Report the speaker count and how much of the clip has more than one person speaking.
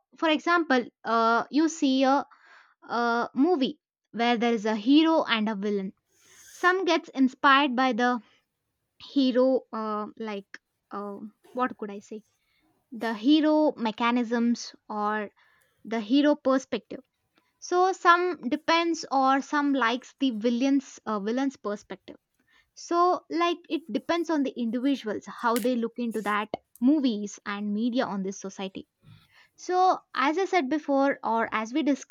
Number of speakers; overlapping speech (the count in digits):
1, no overlap